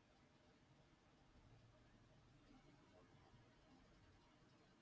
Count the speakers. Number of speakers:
zero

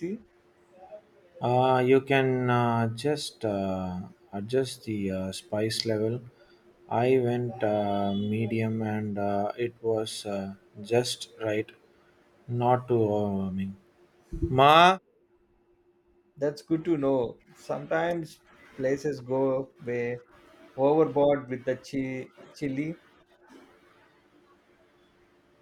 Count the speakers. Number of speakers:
two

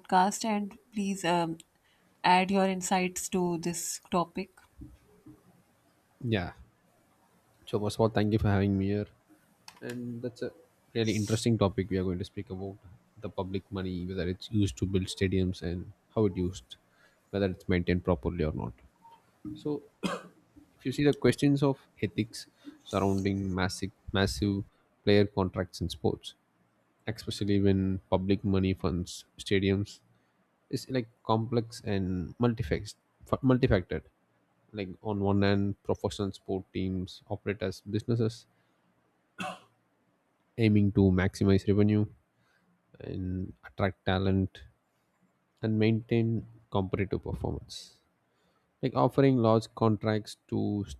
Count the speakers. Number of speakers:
two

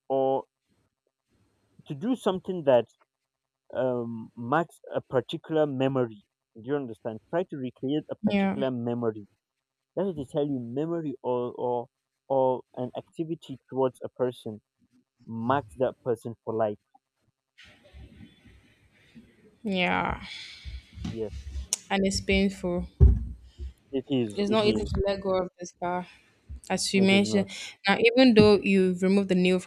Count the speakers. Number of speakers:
two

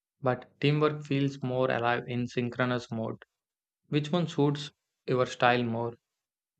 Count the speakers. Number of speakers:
one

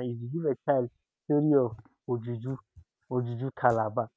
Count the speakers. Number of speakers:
one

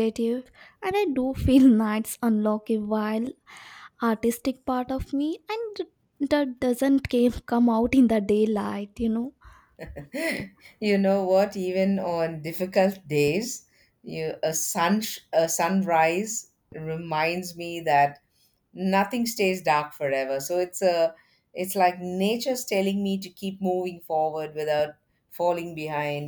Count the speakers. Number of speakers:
two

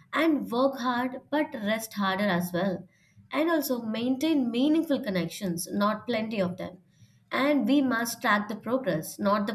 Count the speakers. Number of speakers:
one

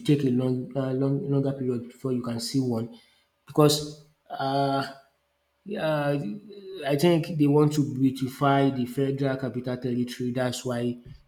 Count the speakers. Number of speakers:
one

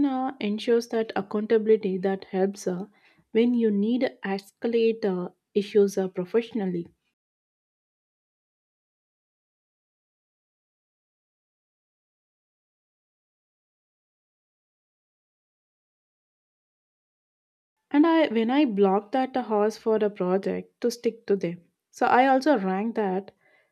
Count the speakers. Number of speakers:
one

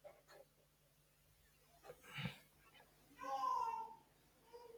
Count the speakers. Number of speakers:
zero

